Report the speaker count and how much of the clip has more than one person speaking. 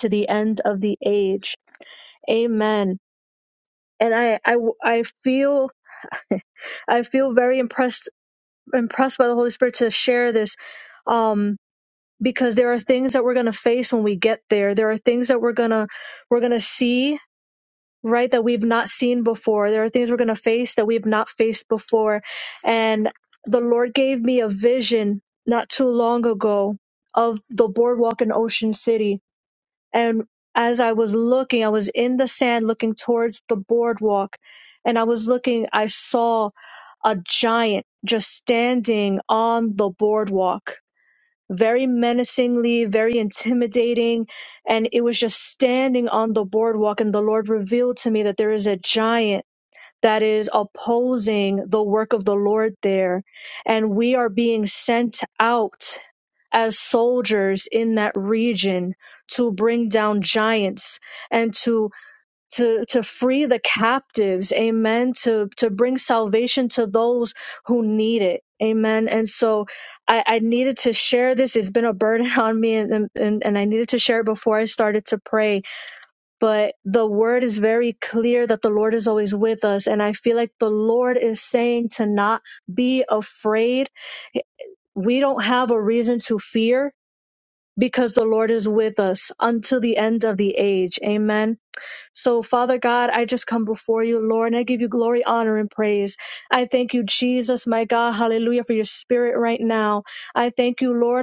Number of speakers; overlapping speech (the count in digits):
1, no overlap